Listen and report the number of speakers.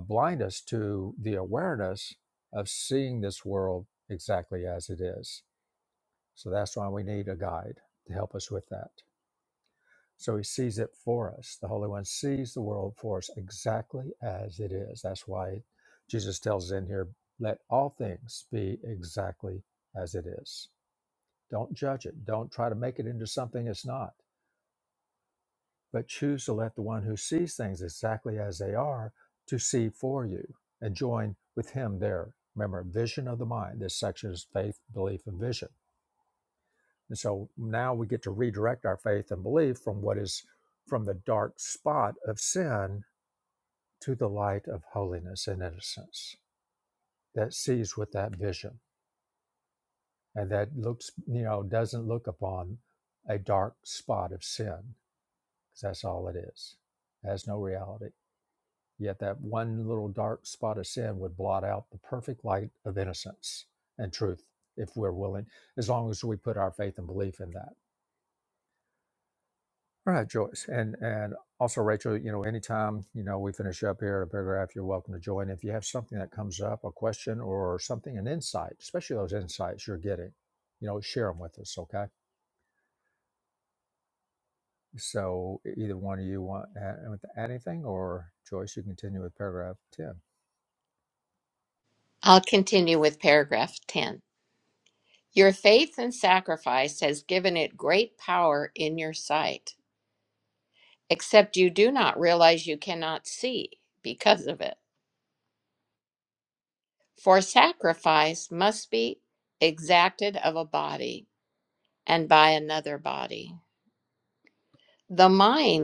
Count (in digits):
2